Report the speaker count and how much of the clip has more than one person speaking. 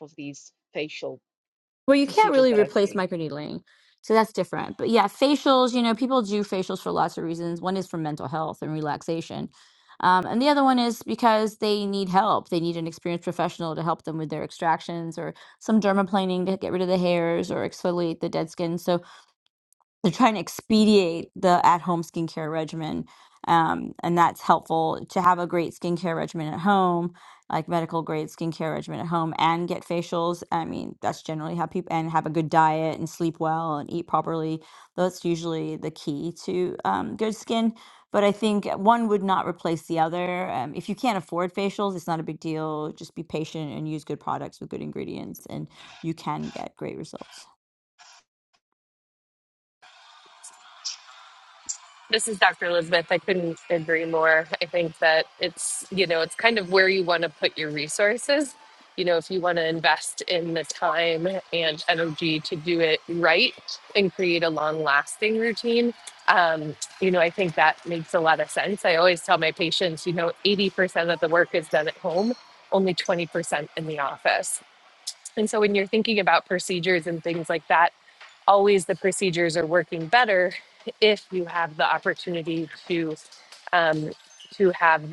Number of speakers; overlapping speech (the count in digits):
3, about 1%